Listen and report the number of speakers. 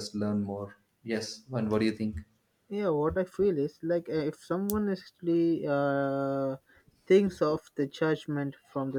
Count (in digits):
2